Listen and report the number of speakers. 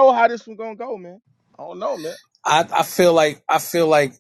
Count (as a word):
two